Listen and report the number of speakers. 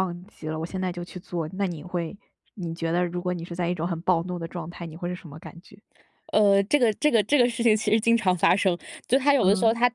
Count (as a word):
two